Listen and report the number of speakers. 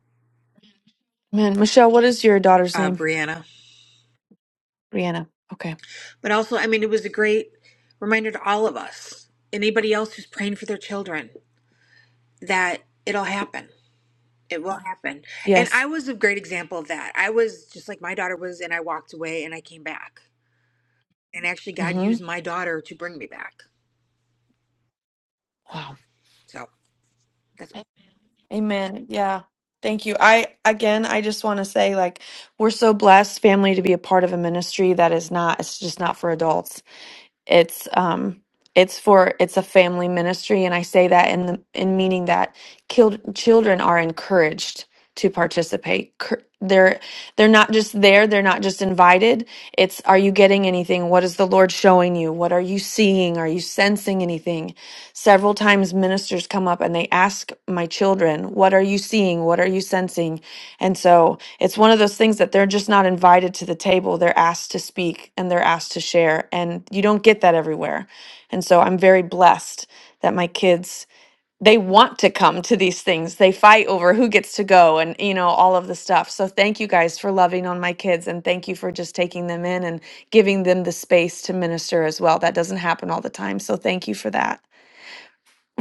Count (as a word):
two